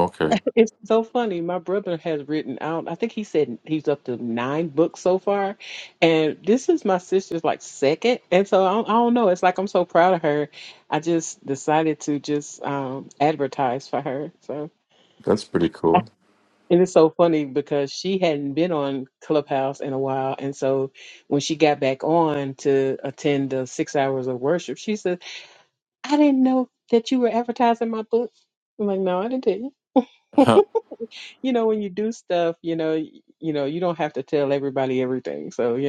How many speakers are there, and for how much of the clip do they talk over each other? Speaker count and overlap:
2, no overlap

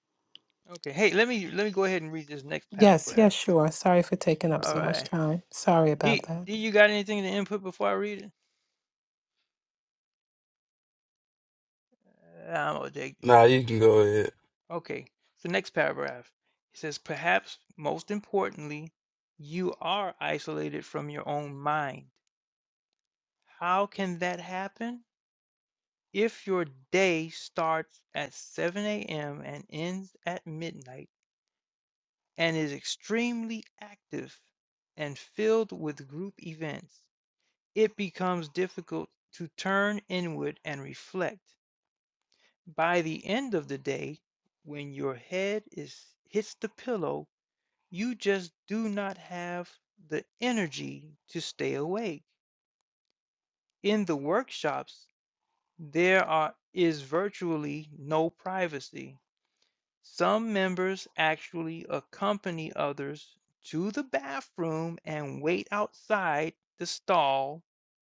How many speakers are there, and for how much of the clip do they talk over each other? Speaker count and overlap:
3, about 3%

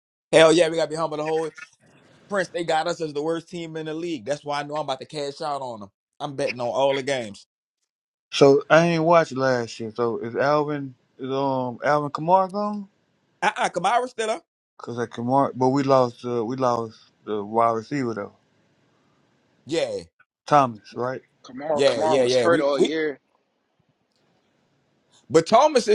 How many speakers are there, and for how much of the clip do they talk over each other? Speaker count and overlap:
3, about 5%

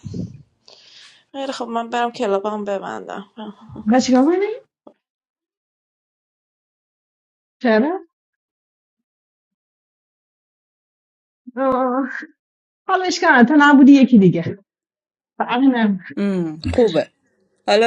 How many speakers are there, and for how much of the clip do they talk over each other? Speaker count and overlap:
3, no overlap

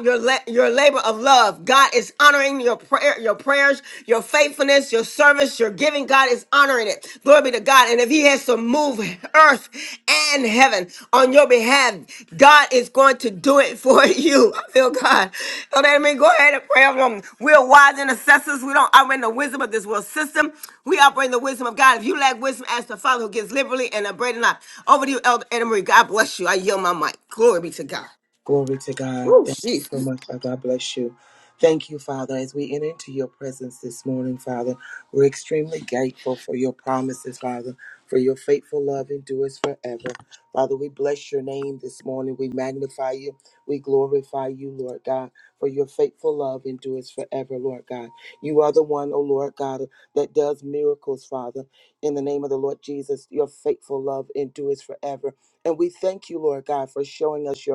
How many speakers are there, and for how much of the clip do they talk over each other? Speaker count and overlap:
2, about 1%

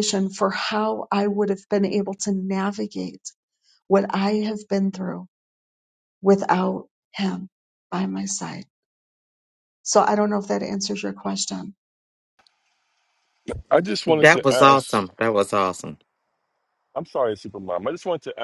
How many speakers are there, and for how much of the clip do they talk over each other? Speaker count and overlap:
3, about 5%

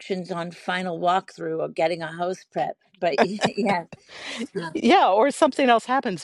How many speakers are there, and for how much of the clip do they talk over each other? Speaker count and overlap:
2, no overlap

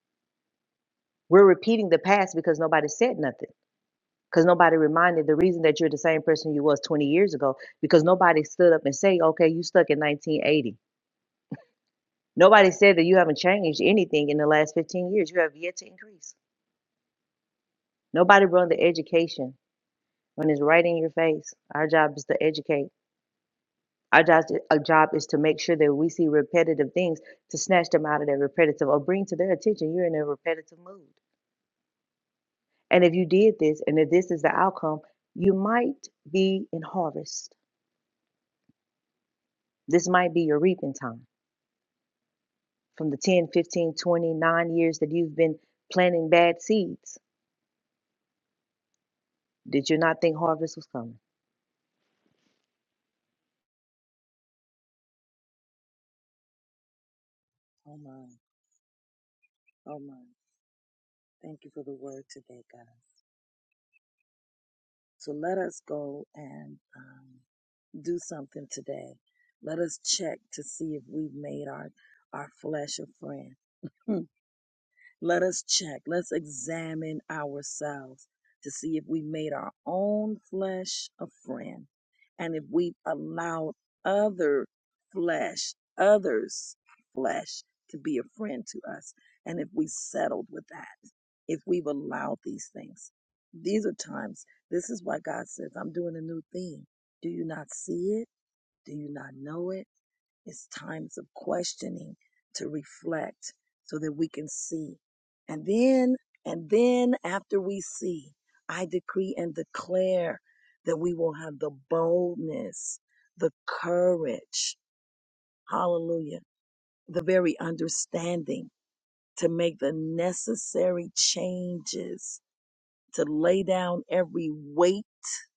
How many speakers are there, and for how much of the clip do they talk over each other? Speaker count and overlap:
2, no overlap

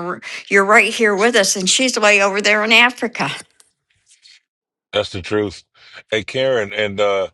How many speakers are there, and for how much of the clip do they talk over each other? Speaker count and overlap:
2, no overlap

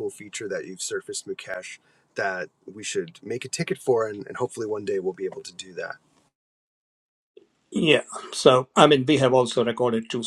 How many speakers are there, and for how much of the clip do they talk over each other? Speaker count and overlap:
2, no overlap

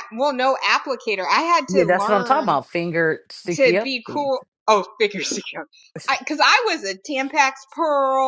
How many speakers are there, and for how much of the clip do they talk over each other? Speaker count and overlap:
2, about 19%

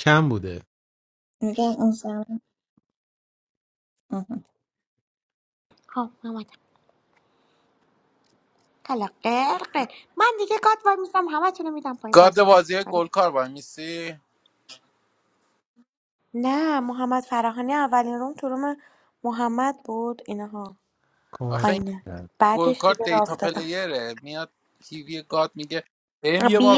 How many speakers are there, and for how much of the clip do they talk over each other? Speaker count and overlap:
4, about 10%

